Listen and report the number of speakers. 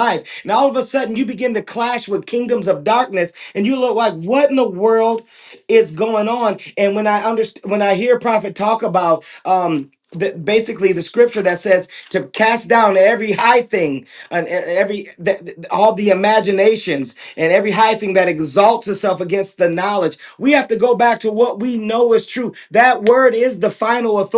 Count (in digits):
1